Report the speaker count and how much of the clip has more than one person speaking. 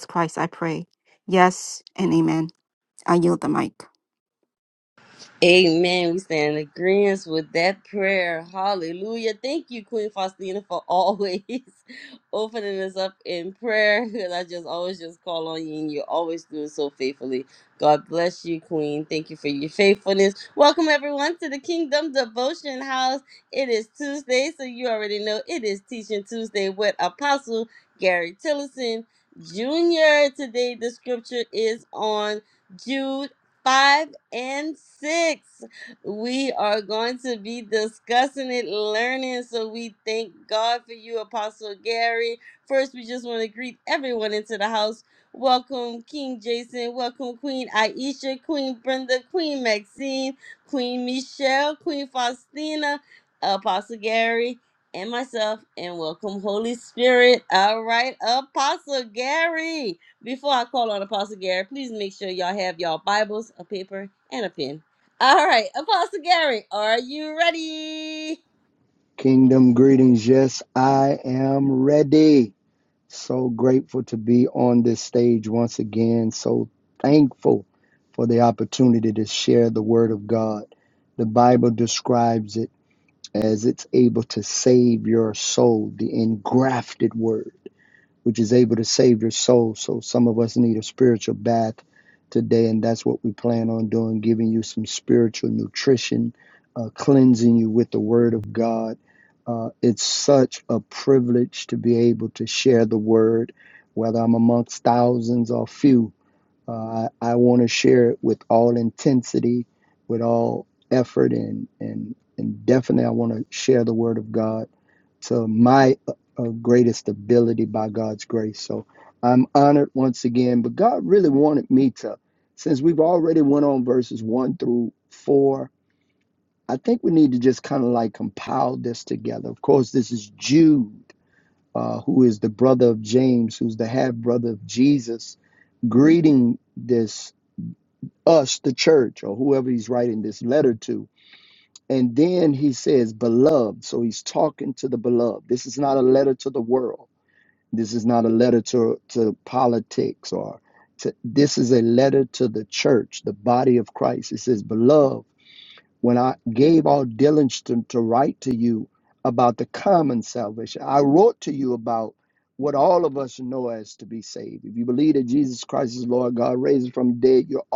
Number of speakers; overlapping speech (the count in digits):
3, no overlap